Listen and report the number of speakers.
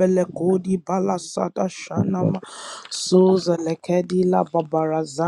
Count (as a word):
one